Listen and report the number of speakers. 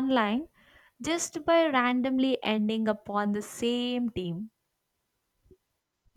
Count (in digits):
1